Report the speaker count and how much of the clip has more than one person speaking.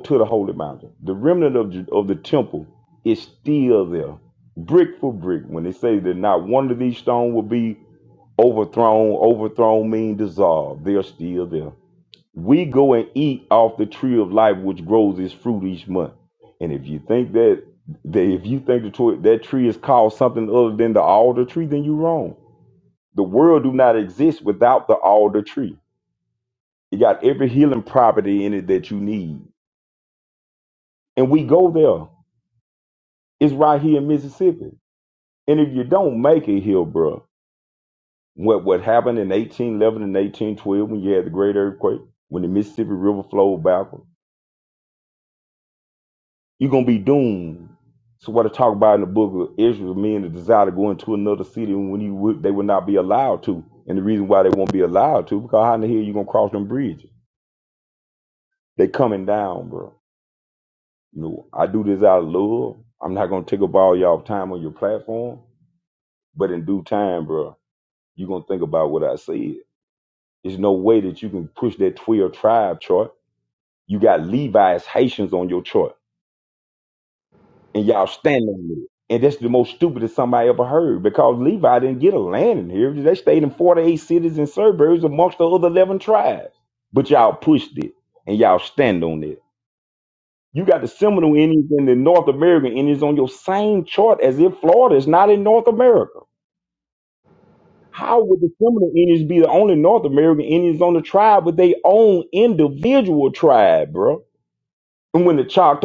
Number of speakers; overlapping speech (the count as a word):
one, no overlap